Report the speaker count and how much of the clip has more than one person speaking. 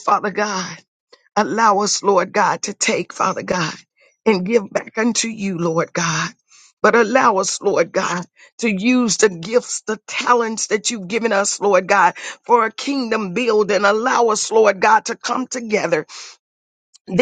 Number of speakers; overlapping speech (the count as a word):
one, no overlap